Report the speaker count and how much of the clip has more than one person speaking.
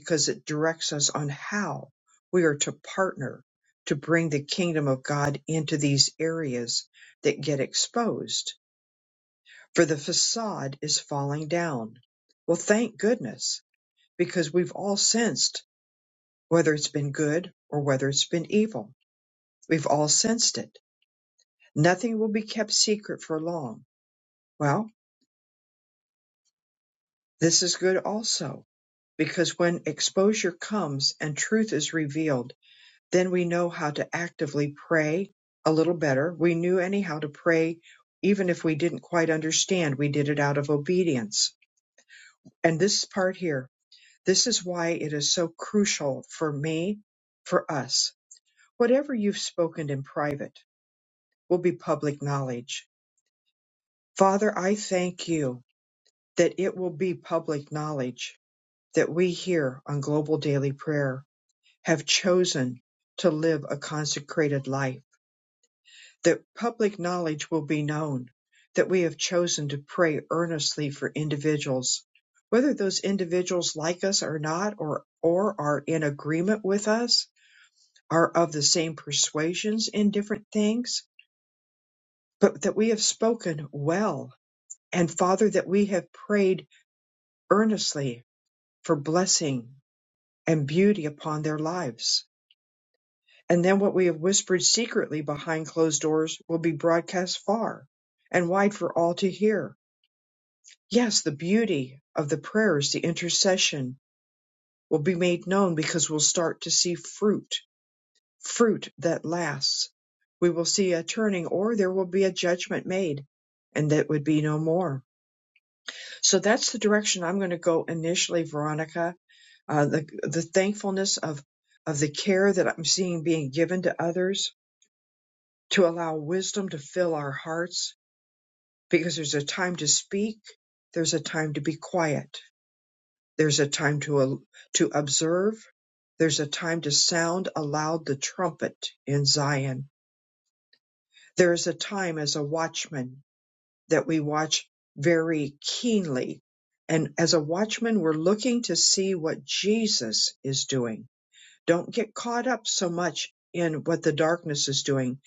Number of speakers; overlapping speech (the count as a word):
one, no overlap